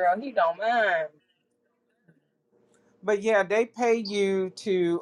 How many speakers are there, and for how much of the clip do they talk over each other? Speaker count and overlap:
2, no overlap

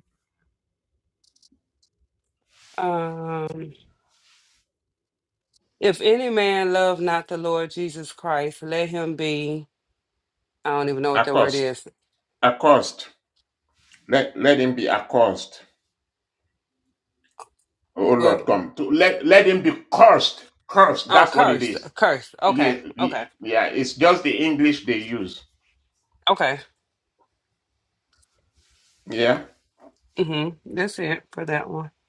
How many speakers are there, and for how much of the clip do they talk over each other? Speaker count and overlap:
2, about 7%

